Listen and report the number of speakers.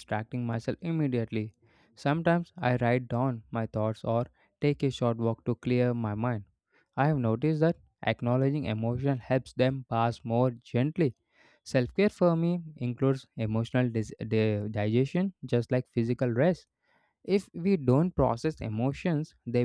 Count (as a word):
one